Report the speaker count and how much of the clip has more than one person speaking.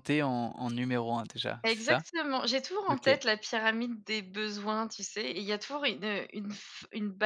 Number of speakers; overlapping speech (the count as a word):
two, about 9%